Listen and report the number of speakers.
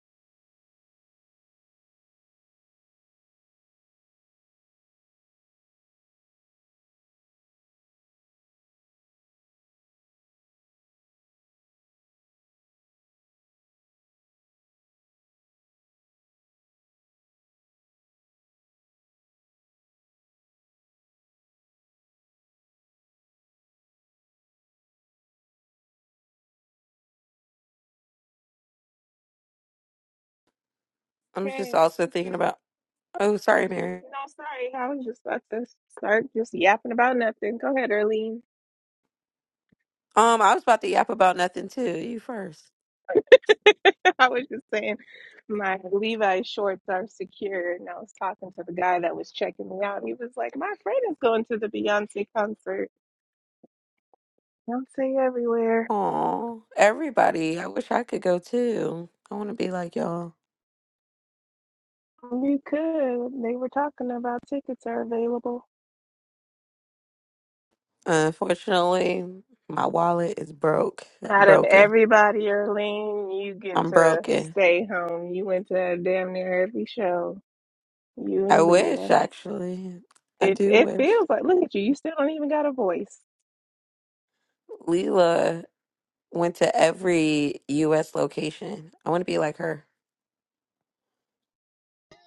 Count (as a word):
two